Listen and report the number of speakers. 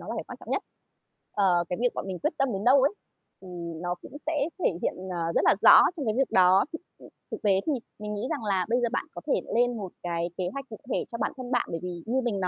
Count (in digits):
1